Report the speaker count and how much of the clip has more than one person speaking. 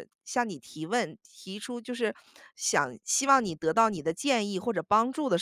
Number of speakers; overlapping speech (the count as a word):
one, no overlap